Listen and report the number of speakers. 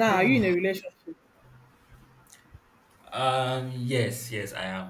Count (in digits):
2